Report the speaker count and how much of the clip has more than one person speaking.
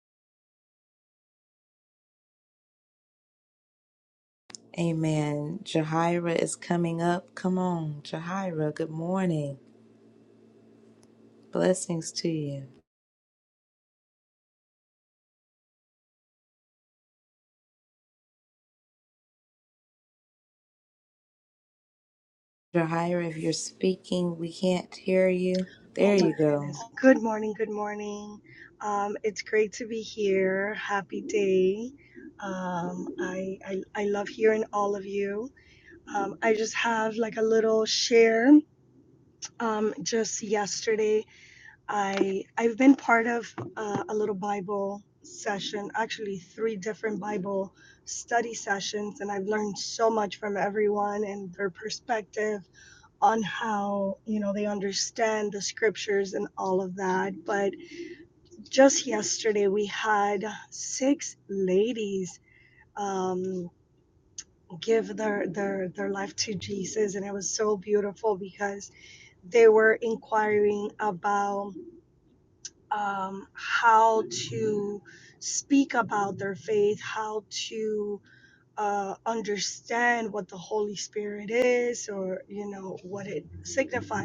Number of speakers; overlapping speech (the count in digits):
2, about 1%